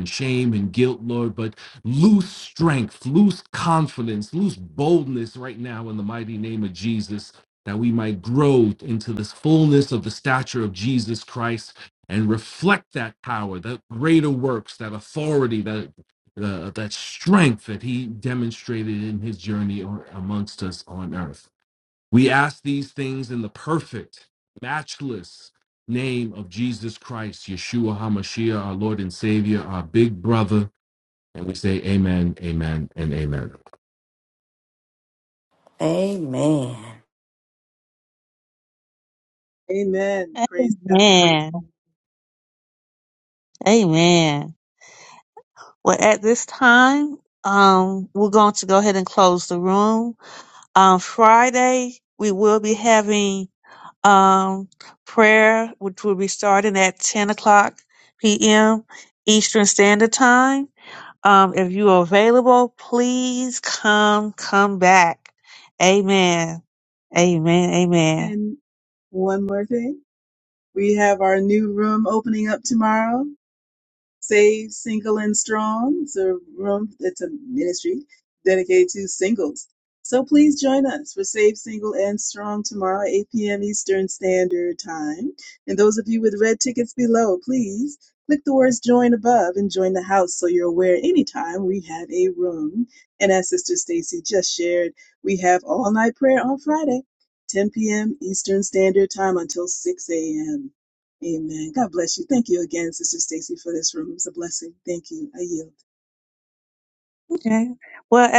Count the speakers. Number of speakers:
4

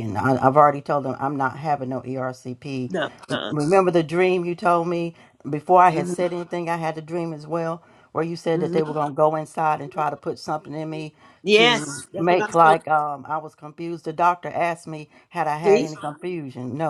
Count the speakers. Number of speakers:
2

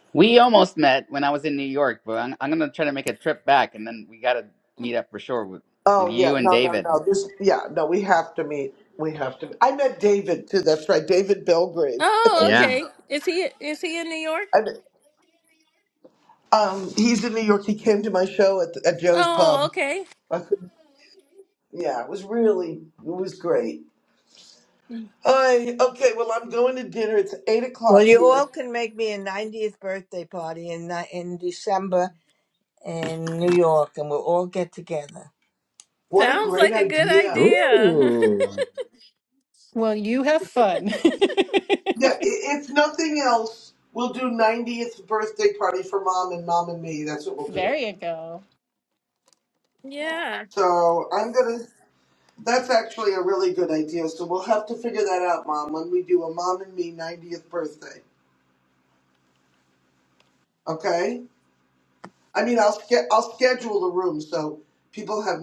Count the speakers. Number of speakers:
5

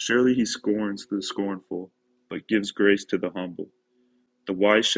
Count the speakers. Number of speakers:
1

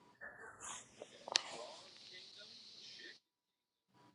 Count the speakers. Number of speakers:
0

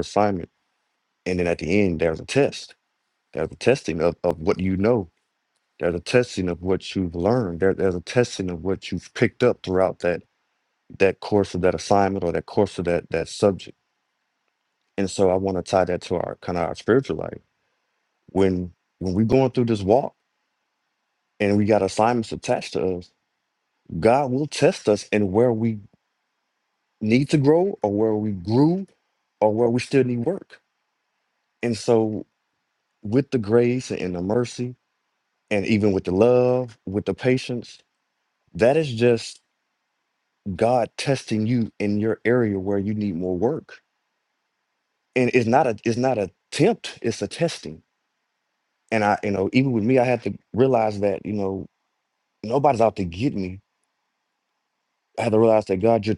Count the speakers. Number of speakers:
1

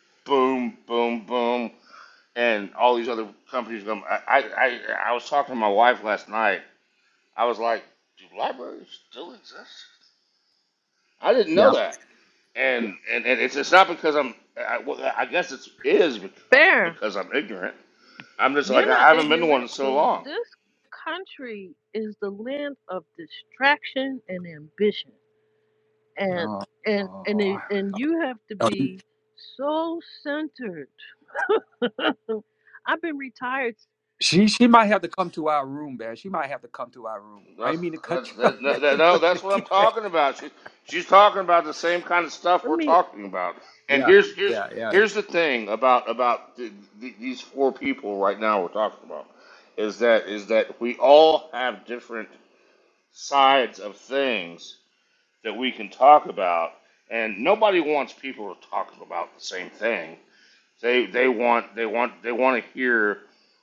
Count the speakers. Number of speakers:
3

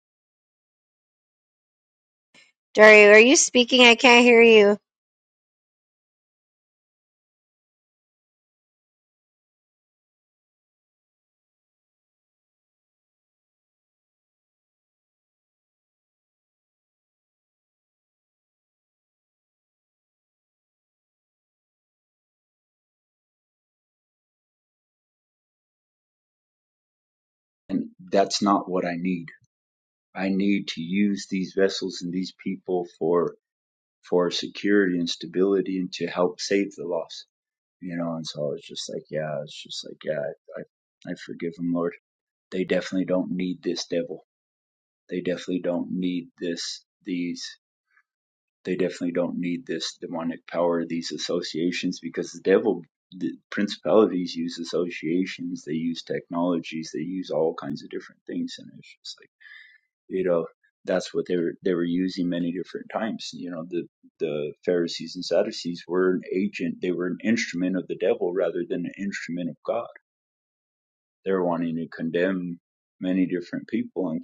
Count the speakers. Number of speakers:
2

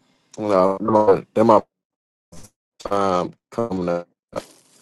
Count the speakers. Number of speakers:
1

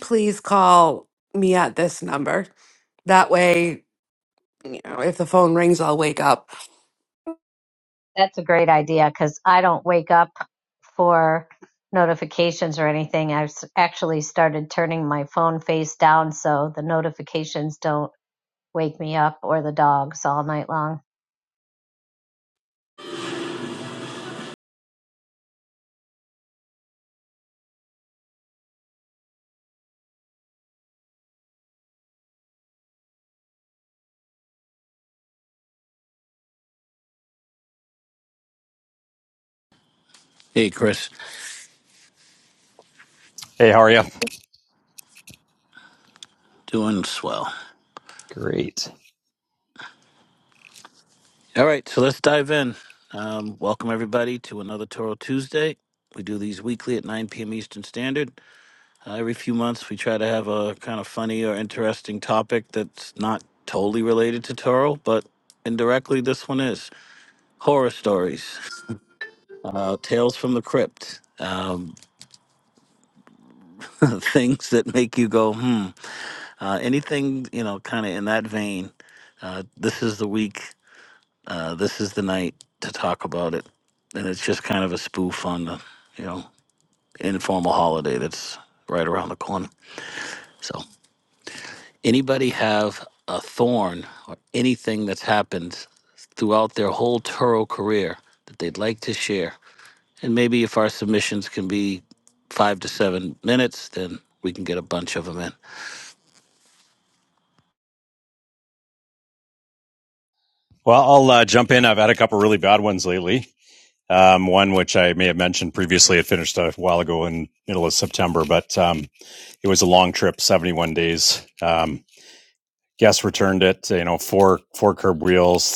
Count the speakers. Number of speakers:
4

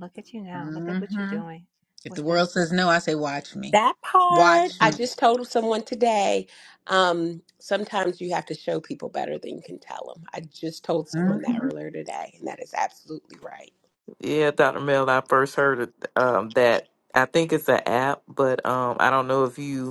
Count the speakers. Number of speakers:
4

